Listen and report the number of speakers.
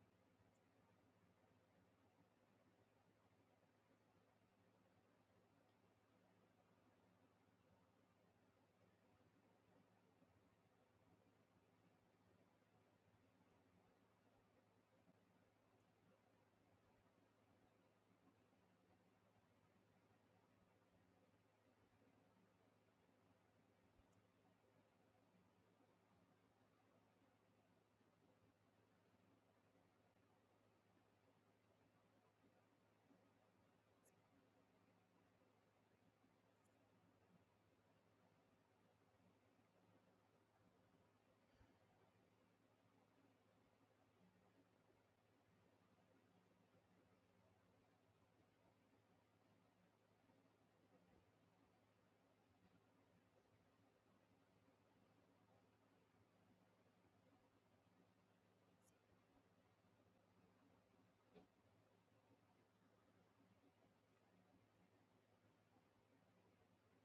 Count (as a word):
zero